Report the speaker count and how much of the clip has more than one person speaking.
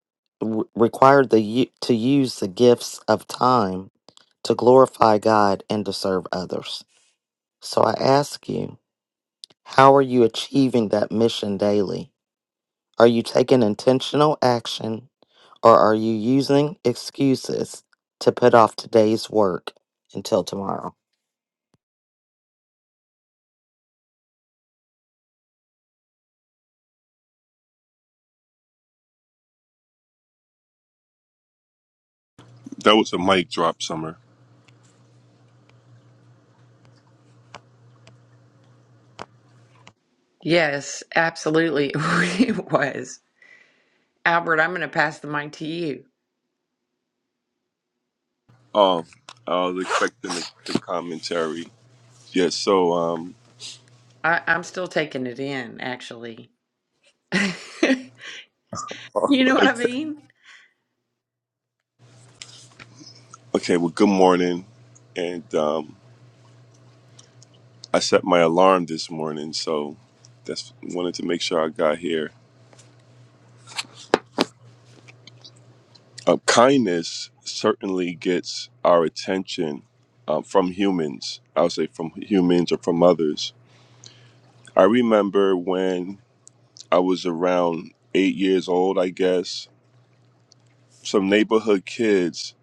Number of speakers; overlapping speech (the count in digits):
3, under 1%